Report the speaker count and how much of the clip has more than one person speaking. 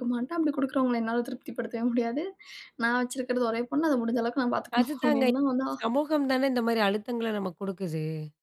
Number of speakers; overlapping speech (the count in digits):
2, about 7%